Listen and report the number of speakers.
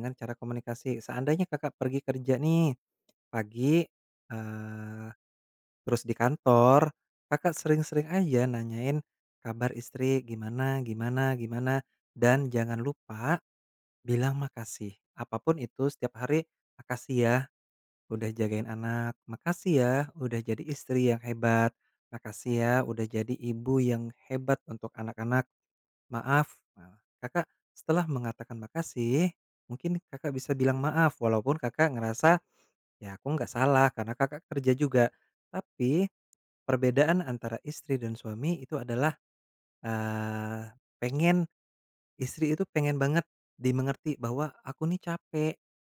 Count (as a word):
one